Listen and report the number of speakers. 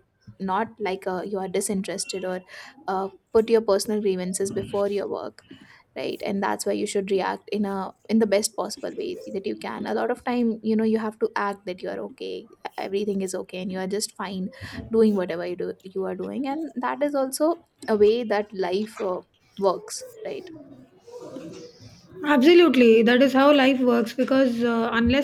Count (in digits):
2